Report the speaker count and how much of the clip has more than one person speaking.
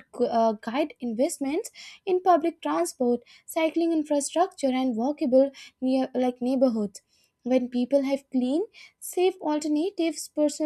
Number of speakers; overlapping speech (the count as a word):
one, no overlap